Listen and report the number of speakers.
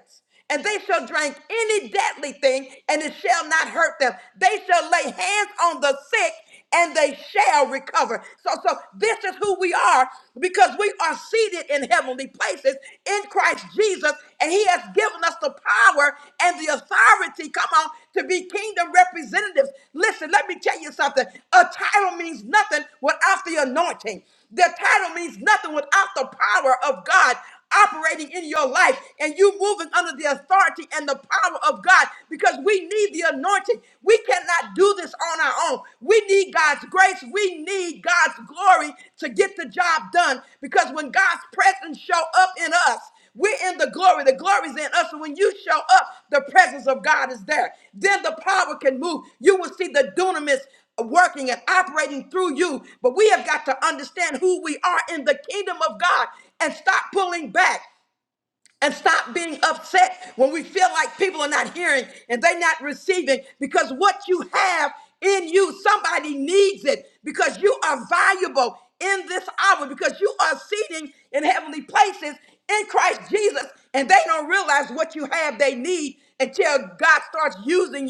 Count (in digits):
1